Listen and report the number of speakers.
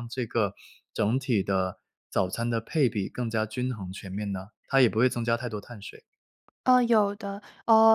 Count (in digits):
2